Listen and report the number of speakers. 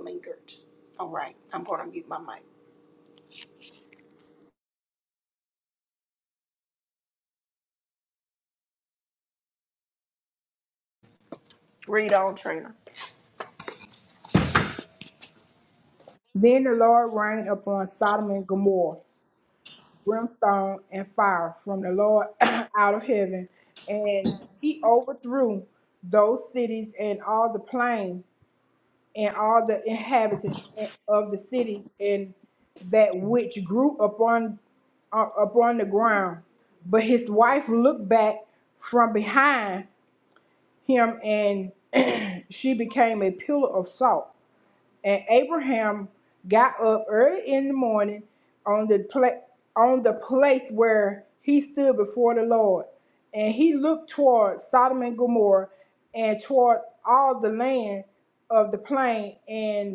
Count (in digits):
2